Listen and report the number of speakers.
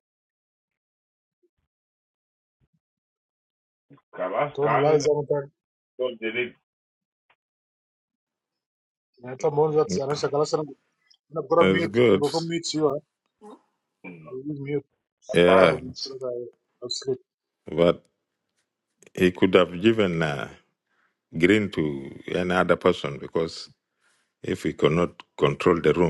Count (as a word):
three